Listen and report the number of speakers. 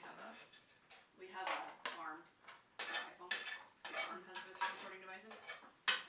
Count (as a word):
one